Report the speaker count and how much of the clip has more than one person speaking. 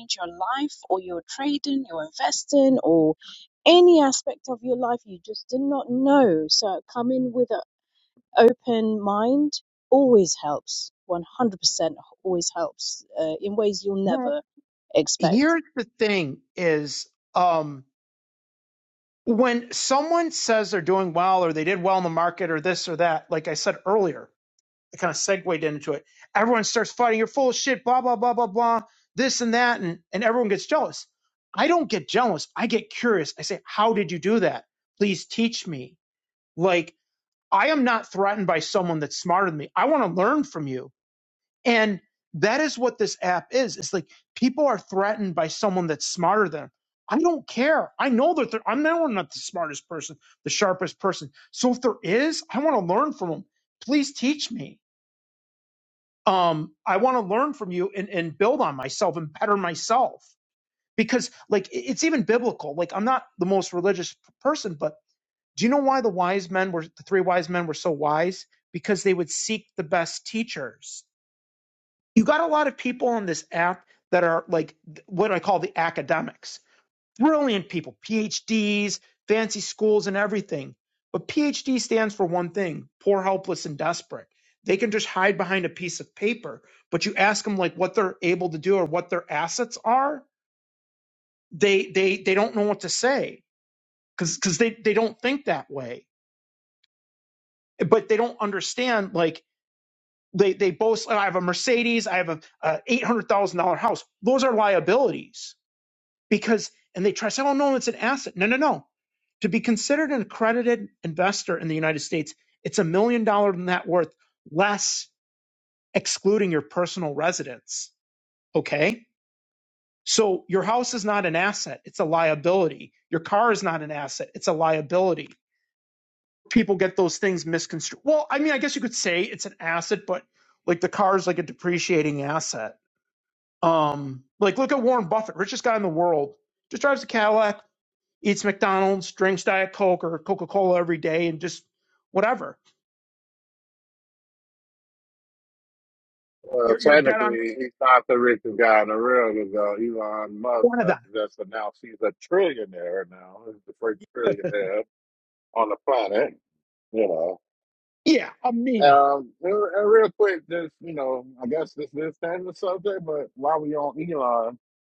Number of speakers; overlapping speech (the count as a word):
three, about 1%